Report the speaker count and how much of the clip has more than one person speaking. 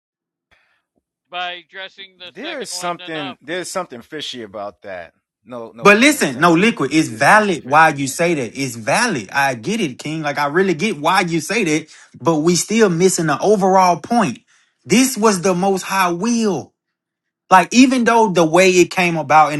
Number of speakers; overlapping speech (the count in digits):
3, about 16%